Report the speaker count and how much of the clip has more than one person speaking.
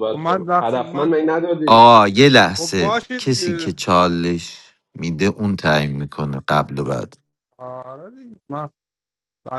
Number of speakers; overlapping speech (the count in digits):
3, about 24%